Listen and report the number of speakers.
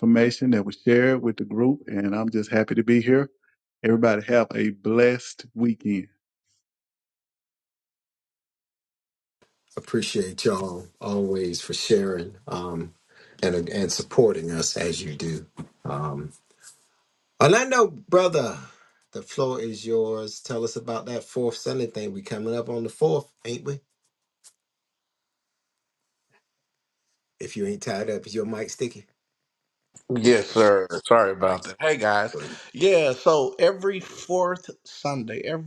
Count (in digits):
3